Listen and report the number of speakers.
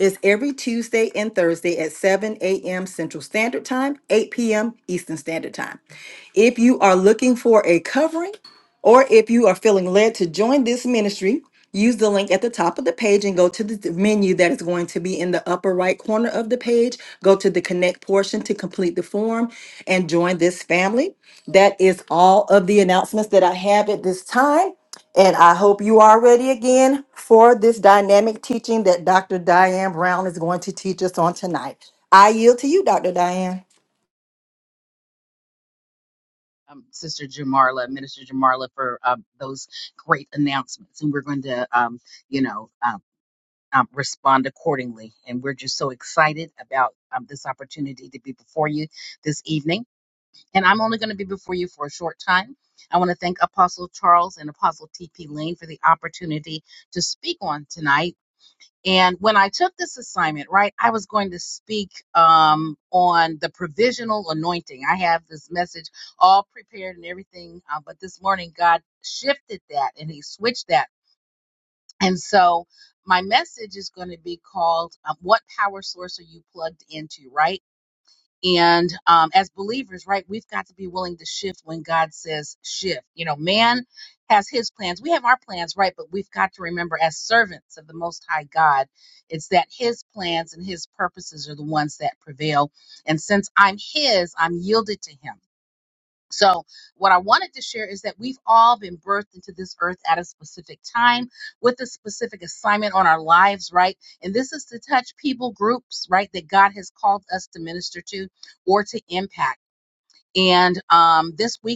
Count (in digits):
2